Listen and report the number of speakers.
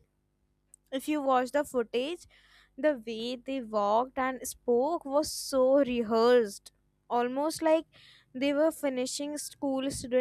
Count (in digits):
1